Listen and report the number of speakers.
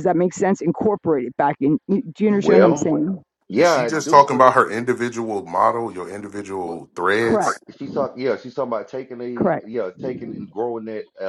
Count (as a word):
three